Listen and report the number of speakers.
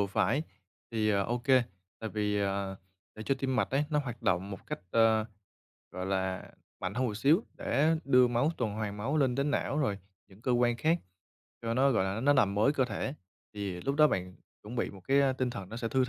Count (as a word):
one